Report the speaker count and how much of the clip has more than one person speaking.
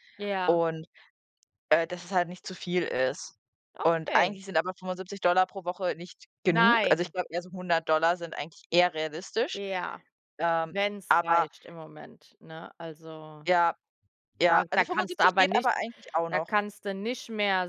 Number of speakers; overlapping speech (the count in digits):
2, about 16%